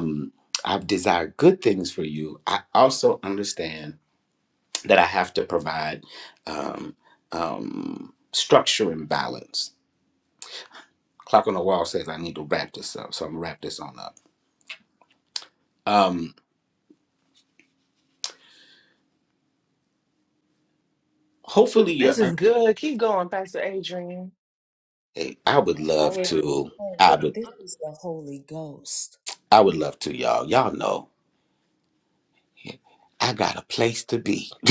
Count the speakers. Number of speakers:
three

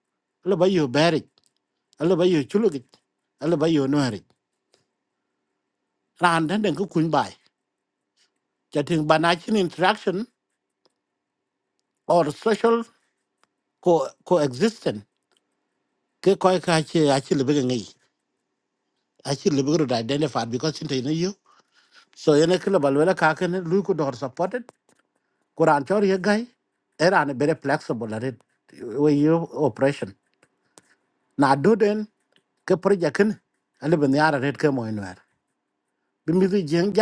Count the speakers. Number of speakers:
one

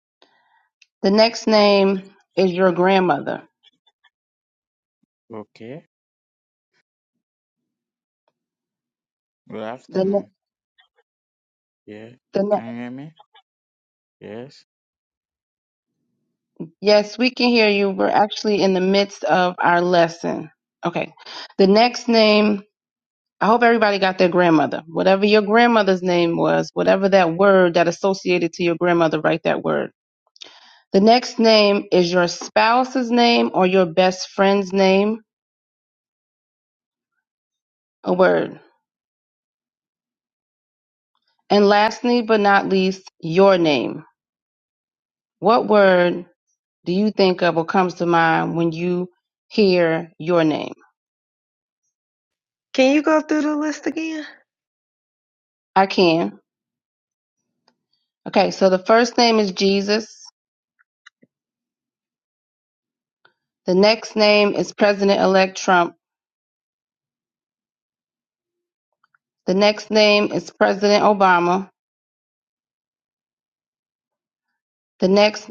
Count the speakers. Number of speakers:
three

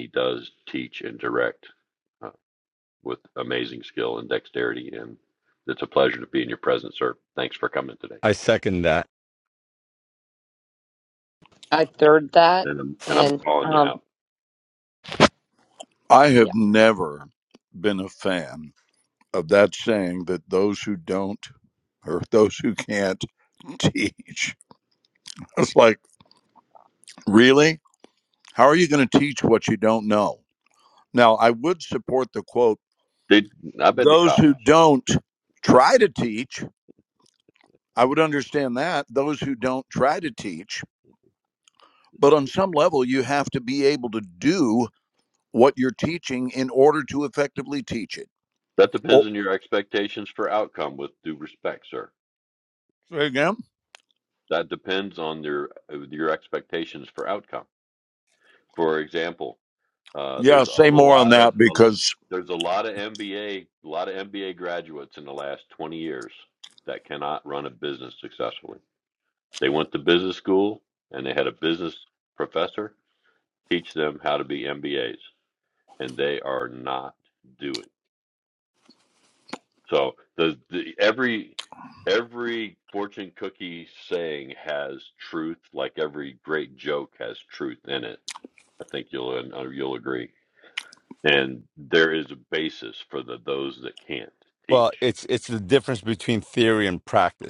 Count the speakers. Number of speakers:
four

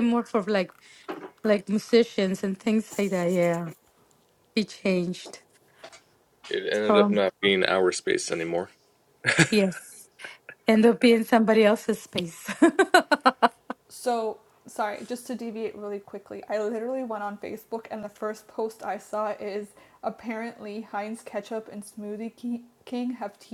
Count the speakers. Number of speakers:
three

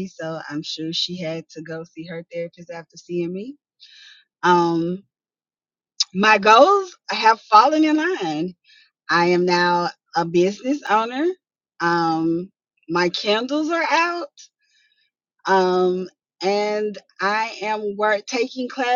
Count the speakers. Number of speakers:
one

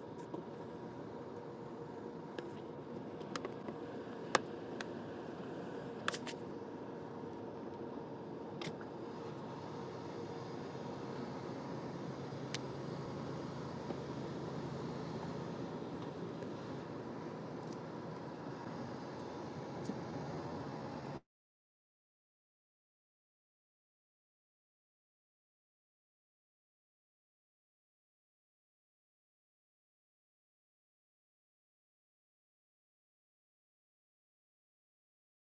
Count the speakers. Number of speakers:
zero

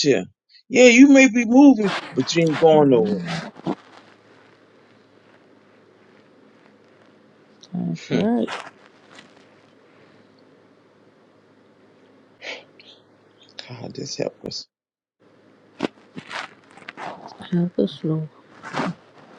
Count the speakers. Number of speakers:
two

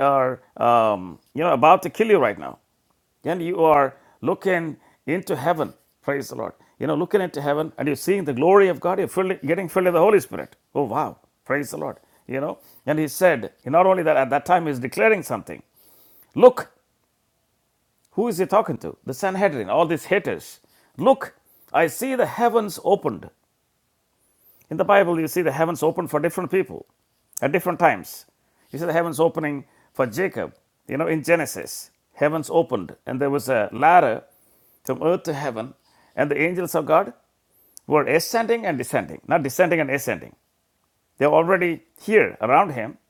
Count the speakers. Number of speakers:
one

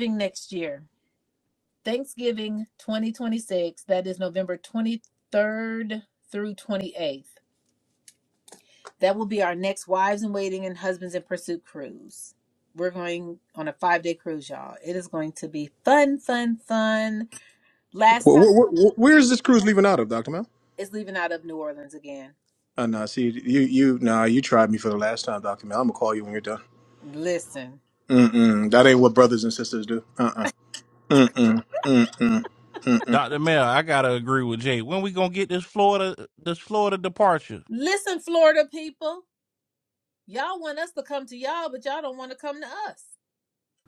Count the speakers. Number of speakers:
three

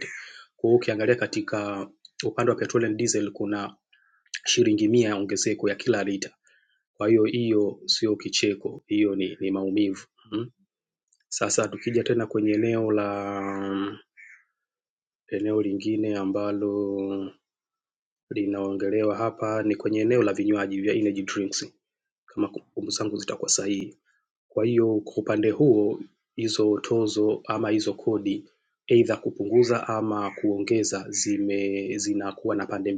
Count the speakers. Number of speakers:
one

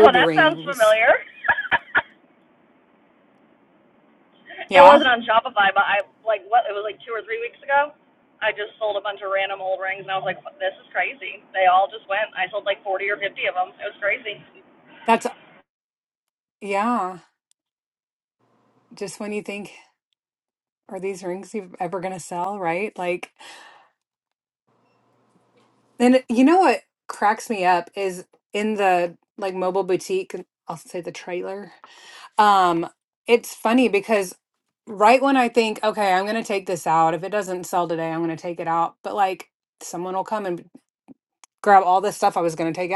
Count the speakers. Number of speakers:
two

